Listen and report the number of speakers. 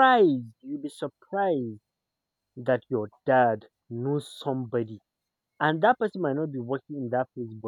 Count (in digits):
1